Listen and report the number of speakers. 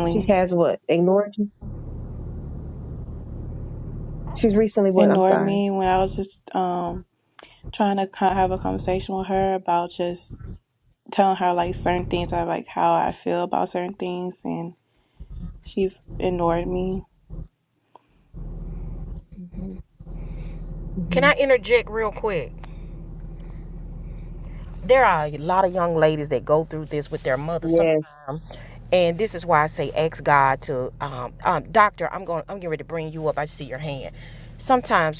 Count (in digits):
3